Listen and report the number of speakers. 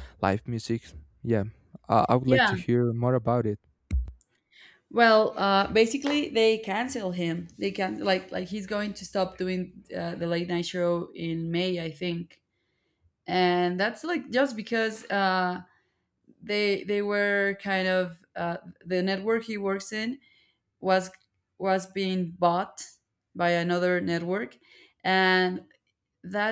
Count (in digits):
2